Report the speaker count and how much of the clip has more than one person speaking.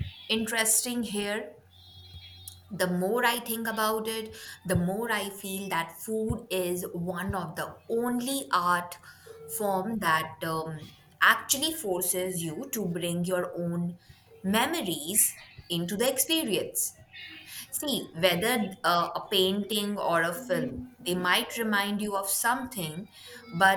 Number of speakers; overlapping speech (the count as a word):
one, no overlap